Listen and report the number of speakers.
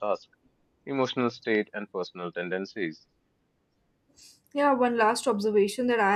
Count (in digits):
2